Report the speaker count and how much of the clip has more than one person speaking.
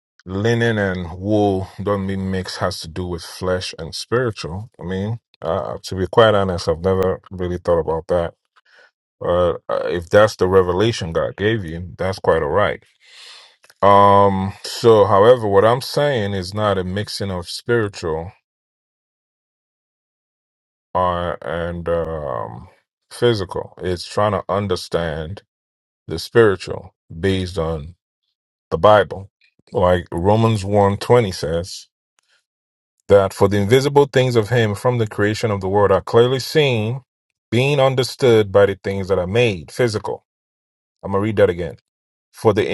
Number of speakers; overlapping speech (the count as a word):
one, no overlap